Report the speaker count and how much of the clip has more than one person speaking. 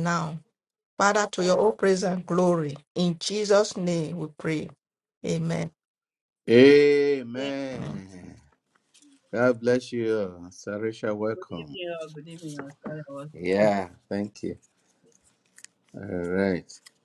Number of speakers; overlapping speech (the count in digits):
3, about 4%